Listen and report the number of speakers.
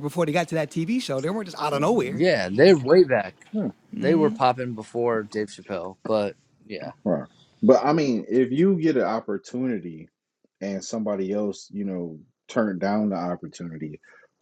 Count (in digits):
3